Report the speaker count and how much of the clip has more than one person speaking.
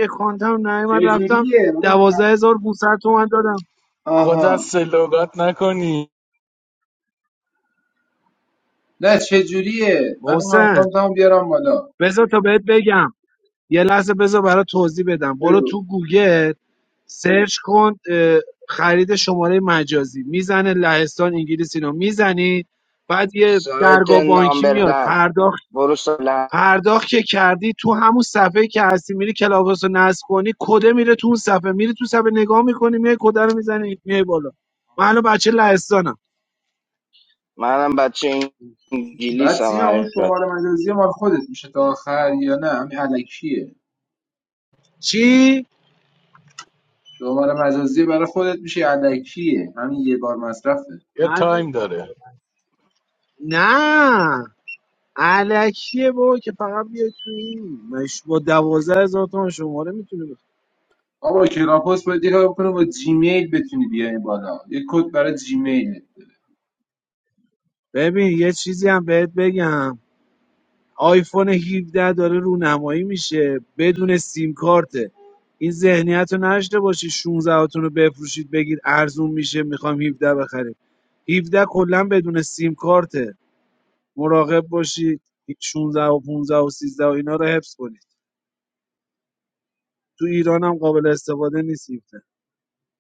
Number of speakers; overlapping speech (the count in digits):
4, about 5%